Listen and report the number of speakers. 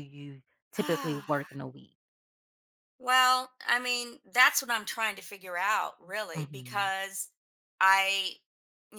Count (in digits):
2